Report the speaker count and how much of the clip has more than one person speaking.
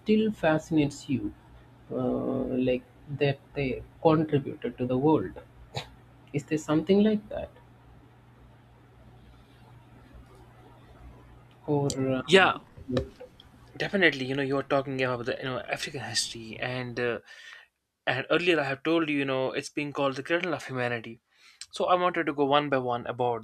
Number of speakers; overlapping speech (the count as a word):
two, about 1%